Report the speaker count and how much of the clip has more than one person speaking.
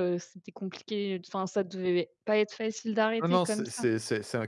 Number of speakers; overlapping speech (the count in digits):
2, about 15%